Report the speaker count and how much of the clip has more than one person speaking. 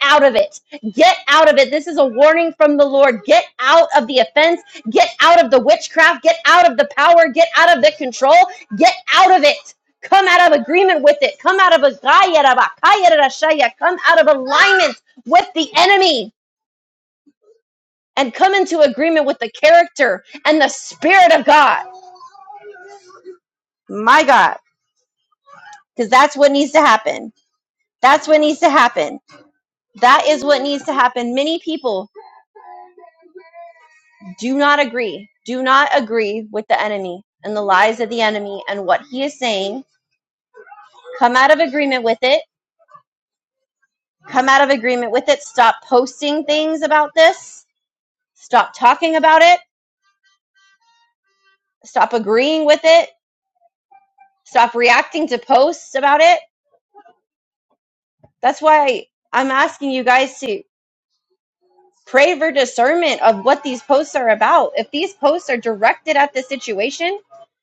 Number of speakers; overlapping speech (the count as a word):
one, no overlap